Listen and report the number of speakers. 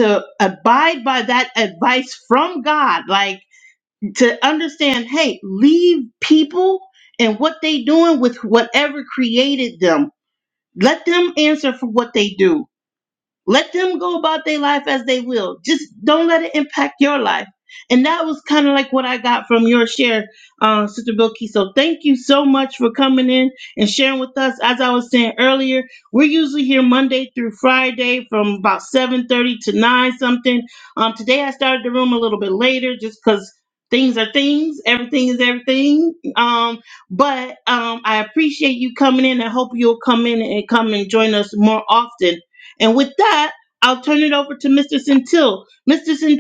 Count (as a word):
one